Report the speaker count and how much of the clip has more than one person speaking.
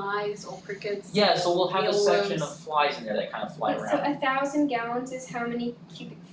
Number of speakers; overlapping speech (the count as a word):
three, about 31%